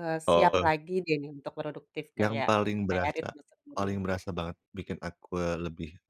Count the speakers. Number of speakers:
two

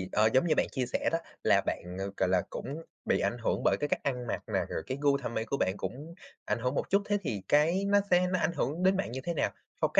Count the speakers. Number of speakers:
one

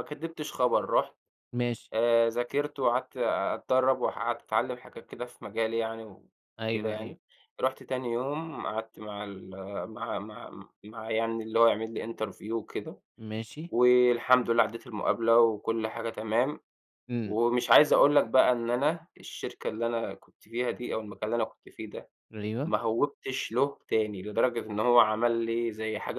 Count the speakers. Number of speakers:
two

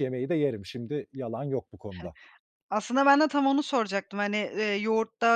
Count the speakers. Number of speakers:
two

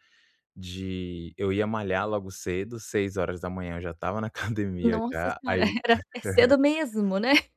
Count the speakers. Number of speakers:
two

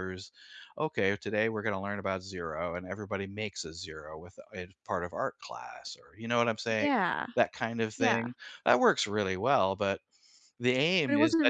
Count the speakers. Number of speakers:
two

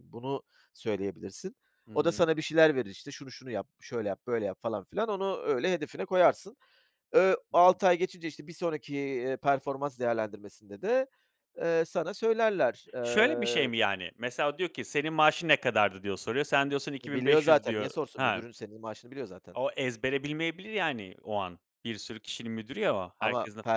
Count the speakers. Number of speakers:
two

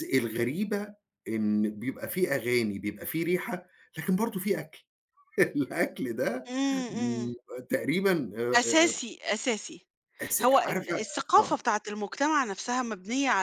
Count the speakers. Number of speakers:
two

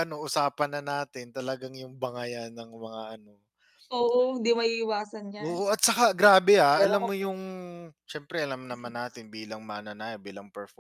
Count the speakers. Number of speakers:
two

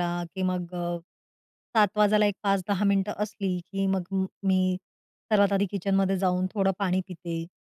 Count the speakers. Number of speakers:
one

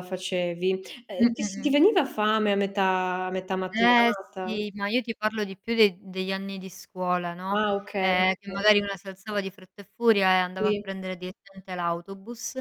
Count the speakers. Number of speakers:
two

